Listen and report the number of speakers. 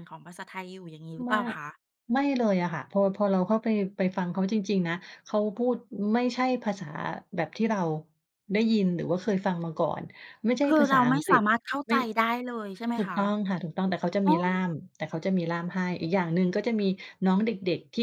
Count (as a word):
two